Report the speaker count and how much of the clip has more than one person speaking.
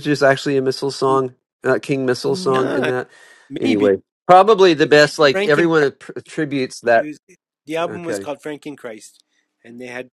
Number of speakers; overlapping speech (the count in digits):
2, about 19%